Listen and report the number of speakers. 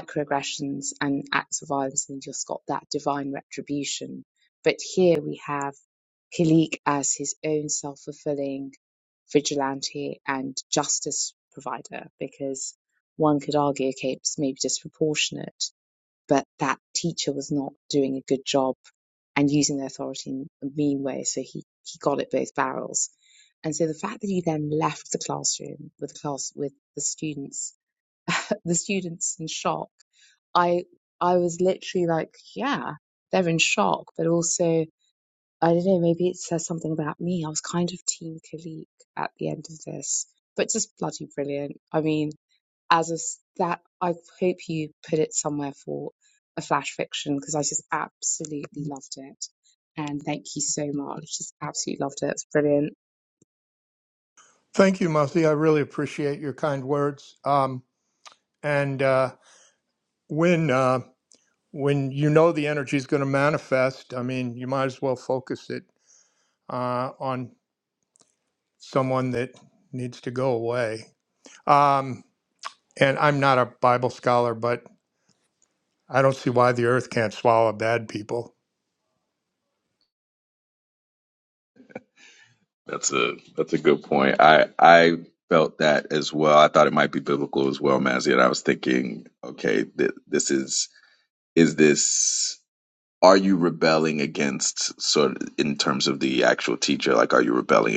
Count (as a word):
three